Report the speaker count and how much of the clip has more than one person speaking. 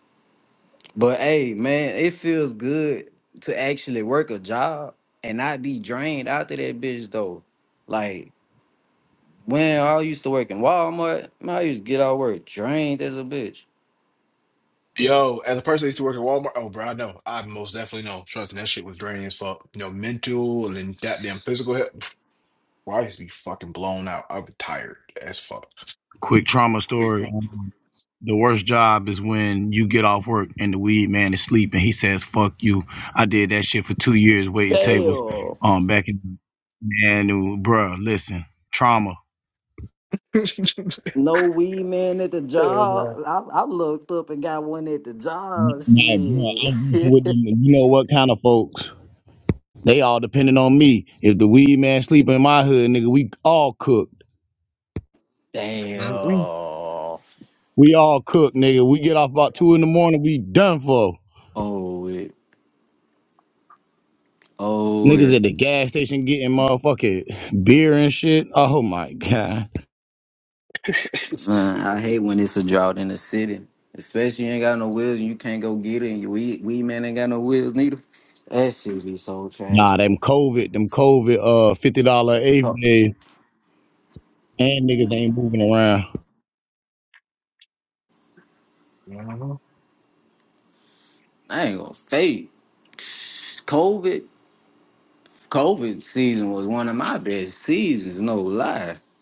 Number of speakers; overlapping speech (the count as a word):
three, about 5%